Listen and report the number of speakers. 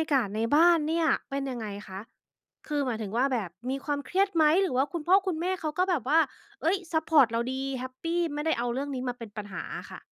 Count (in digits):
1